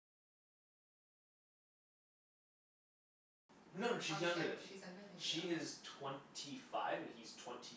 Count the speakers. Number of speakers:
two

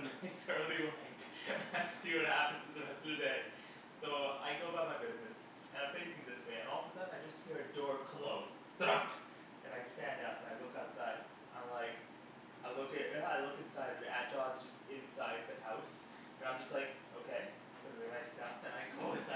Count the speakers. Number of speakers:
one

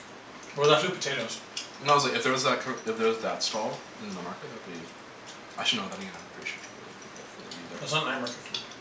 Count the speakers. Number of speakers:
two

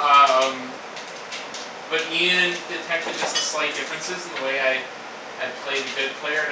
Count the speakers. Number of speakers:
one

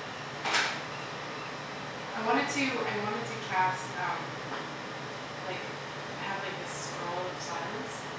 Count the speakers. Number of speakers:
one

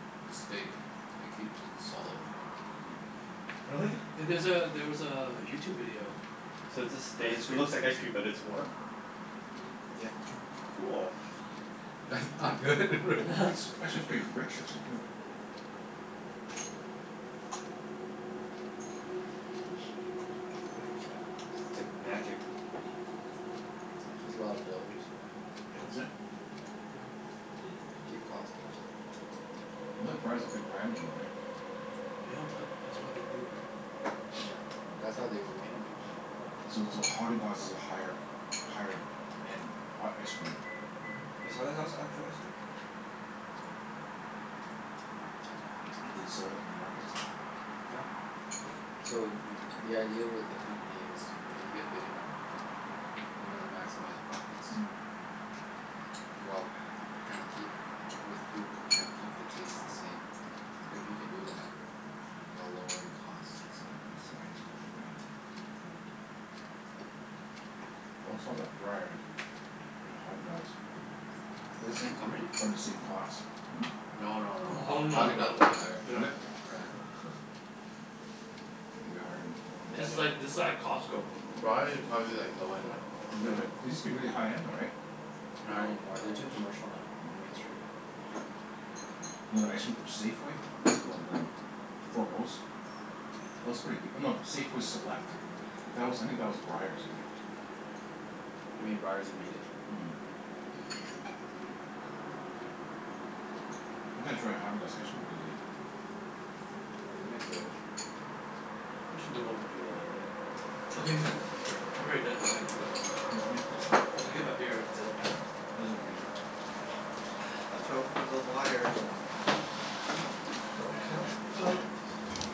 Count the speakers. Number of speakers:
four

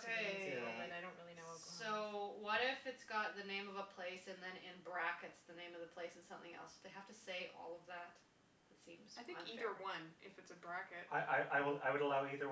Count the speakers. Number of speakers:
four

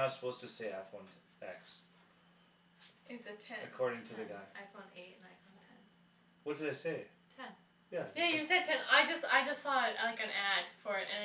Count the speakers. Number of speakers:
three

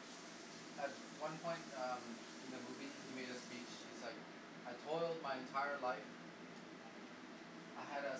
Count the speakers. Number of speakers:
one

